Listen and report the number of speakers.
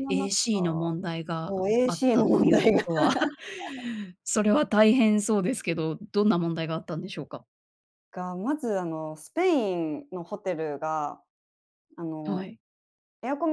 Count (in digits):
2